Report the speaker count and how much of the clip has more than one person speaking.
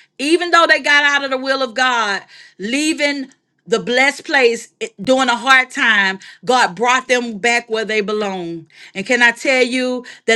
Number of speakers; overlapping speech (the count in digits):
1, no overlap